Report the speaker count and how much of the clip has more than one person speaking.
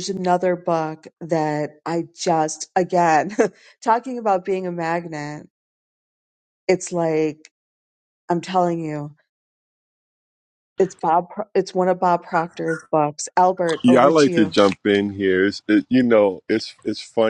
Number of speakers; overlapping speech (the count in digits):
2, about 4%